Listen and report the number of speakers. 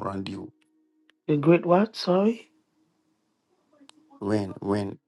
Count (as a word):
two